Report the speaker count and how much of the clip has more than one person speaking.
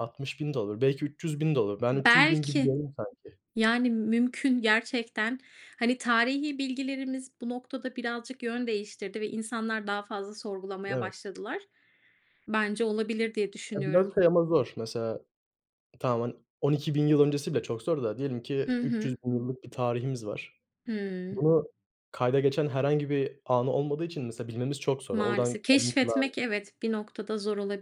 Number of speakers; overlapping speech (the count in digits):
2, about 11%